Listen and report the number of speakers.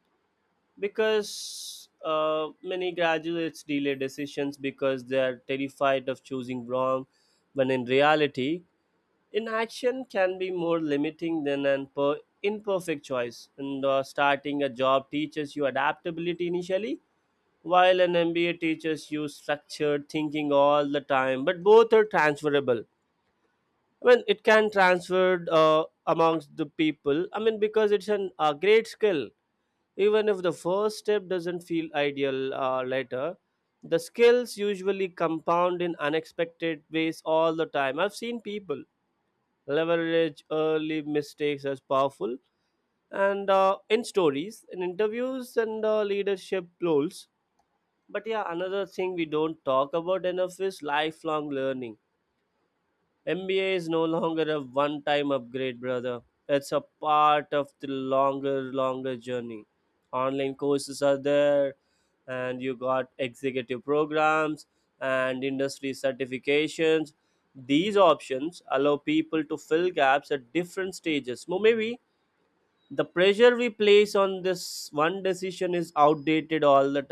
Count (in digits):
1